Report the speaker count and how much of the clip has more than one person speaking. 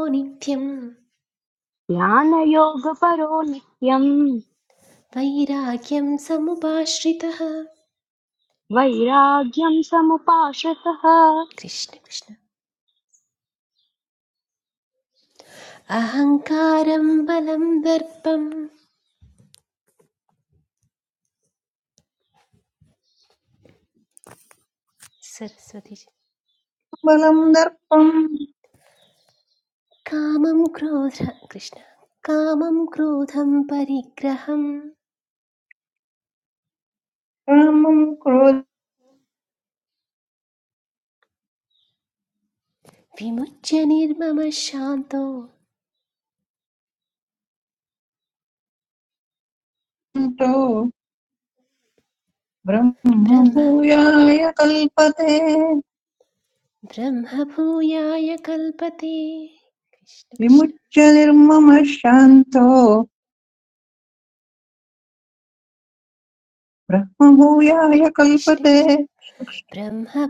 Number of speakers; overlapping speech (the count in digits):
3, about 1%